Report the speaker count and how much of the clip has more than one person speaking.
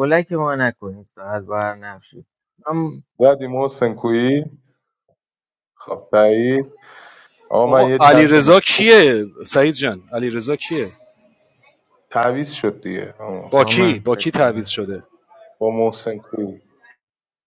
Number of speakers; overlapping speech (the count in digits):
3, about 13%